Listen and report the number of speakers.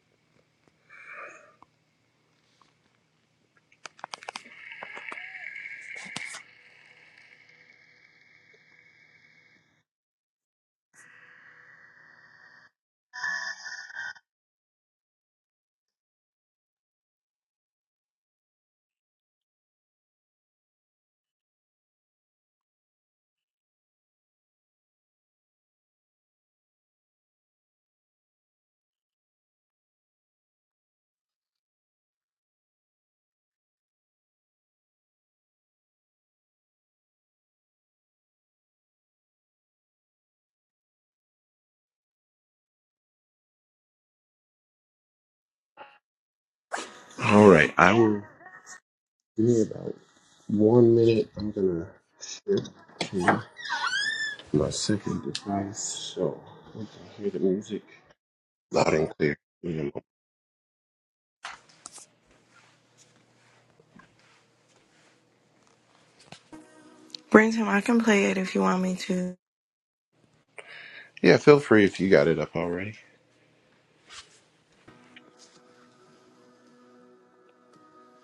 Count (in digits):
2